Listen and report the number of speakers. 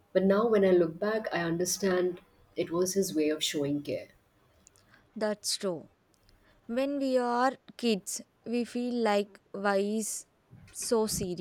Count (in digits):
2